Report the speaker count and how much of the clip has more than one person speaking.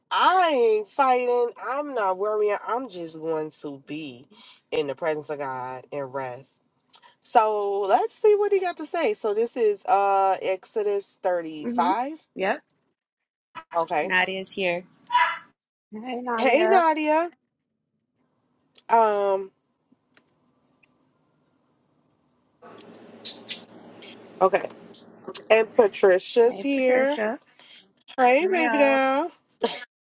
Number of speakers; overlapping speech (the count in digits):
3, about 7%